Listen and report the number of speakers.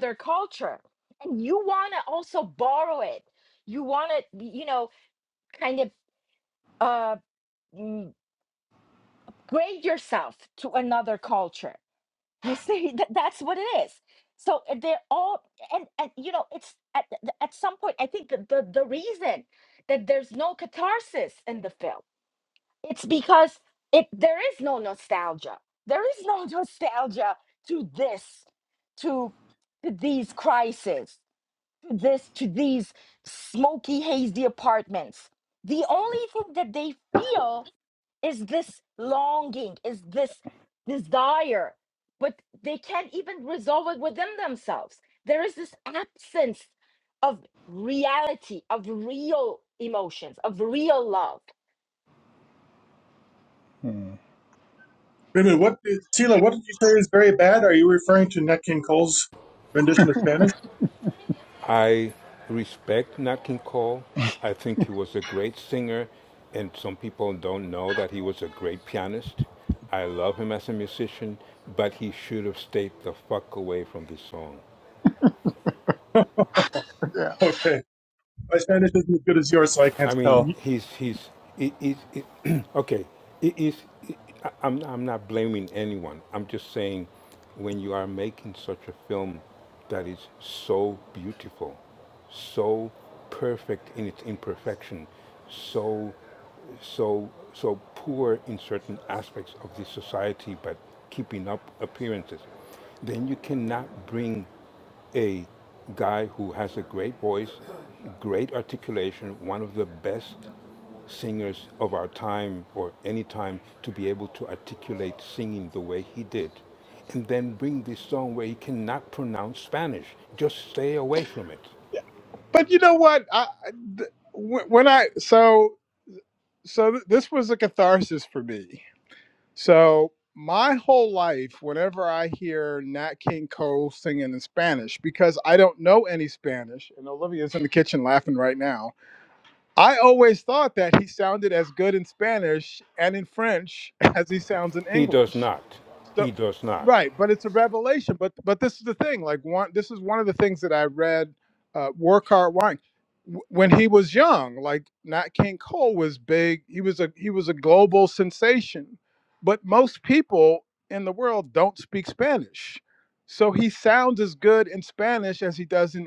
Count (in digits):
4